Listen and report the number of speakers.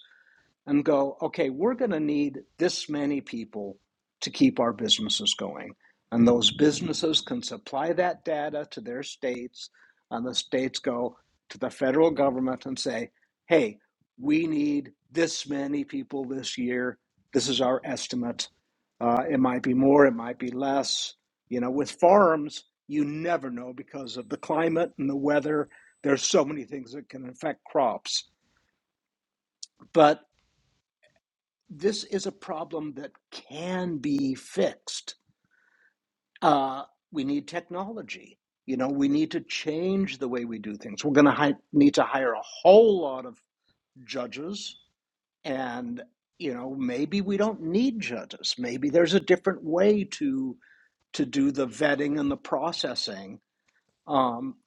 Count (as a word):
one